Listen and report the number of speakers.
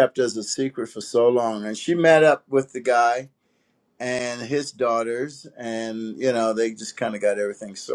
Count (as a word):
one